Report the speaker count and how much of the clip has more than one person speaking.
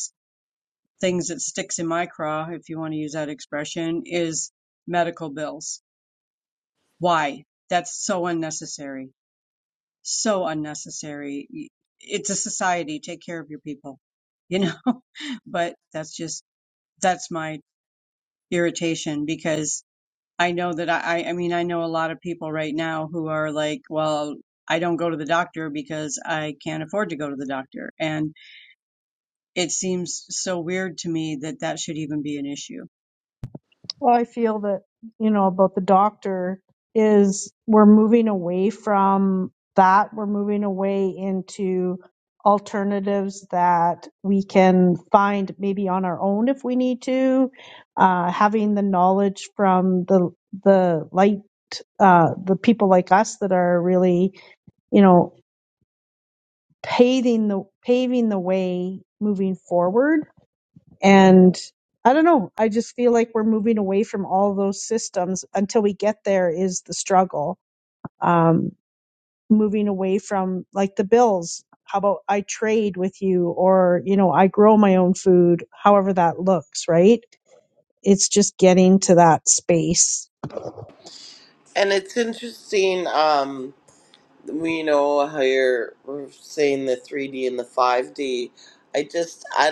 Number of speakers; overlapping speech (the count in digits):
3, no overlap